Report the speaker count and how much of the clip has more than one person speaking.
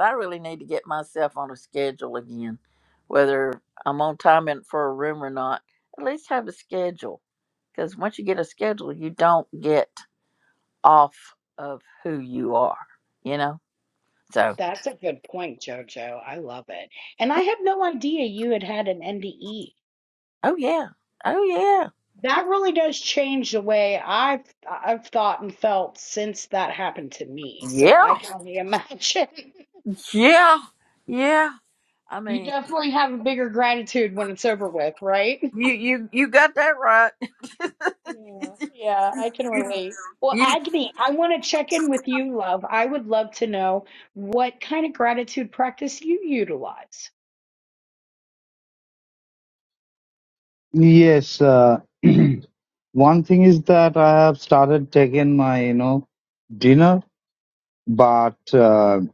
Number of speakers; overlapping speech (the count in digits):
3, about 2%